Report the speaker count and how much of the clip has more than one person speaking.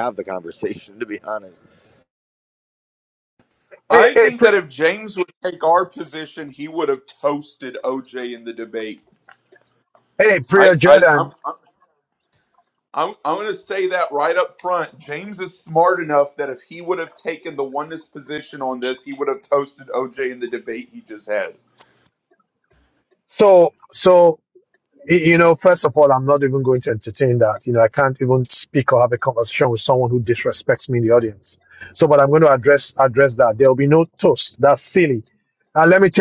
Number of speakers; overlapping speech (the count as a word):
three, about 4%